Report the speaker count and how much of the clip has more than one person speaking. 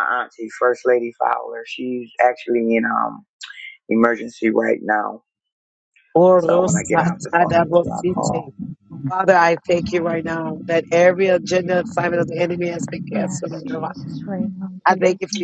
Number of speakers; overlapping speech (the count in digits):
3, about 13%